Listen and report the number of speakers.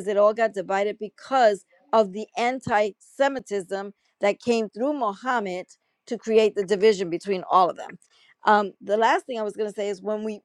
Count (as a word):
one